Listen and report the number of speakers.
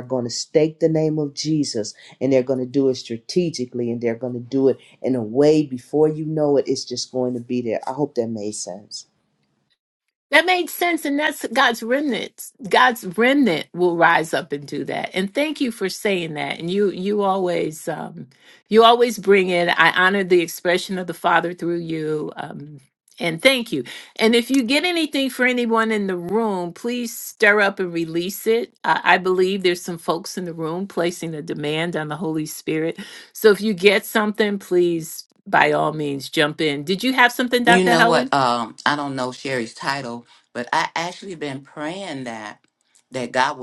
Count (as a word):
three